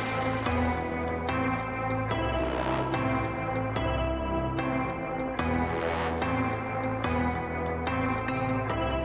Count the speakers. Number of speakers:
0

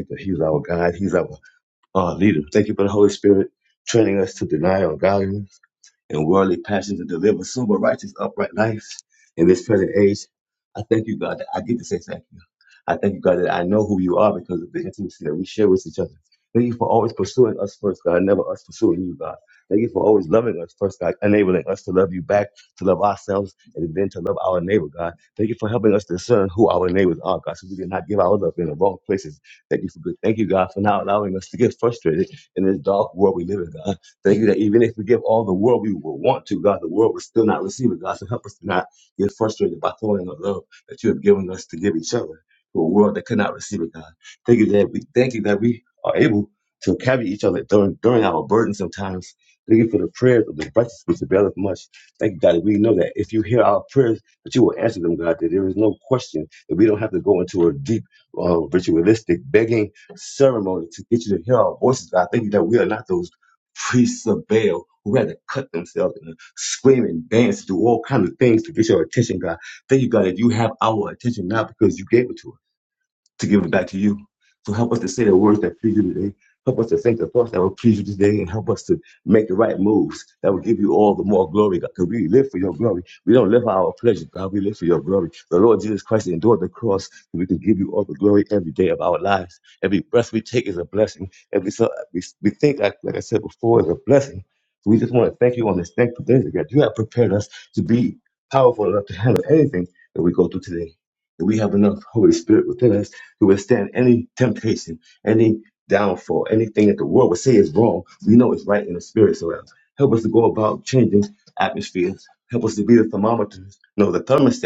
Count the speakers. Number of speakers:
1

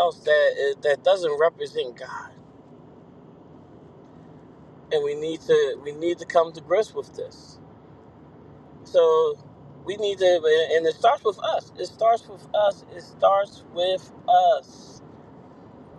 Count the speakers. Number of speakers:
1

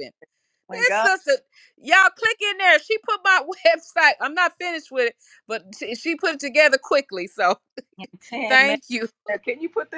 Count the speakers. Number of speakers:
2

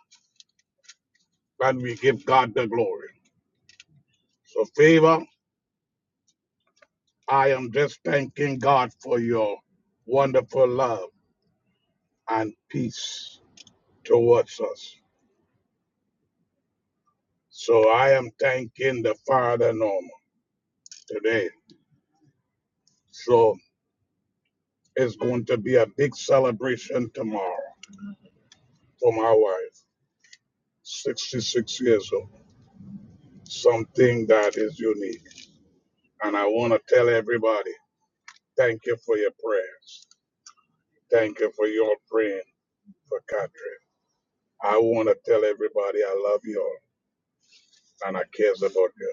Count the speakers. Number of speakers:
1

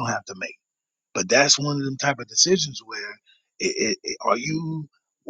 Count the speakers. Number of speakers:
1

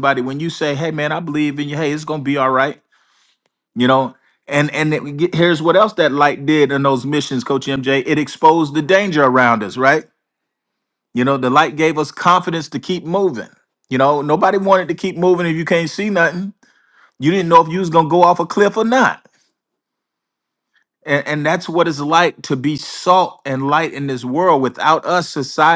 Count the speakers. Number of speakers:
1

